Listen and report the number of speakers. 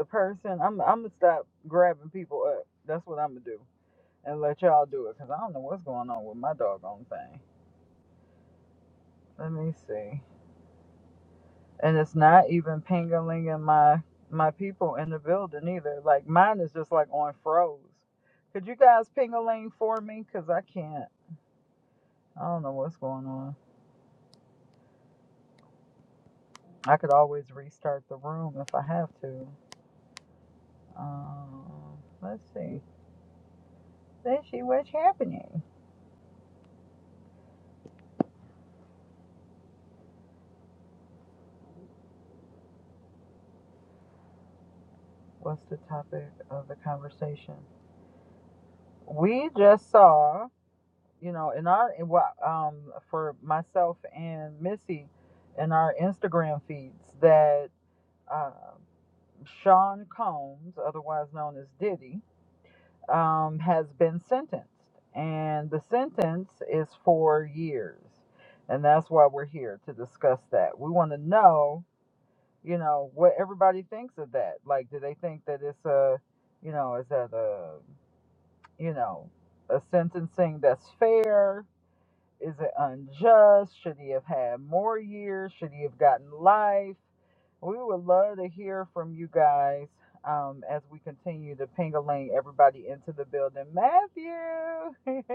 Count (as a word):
one